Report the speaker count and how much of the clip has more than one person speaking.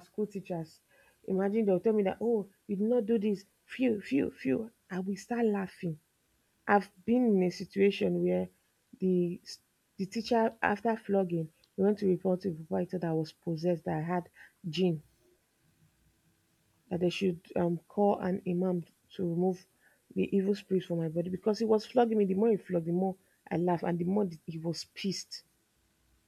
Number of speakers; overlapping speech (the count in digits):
1, no overlap